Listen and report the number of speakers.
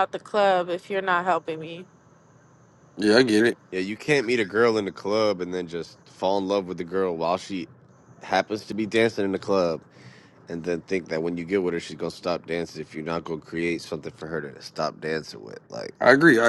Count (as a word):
three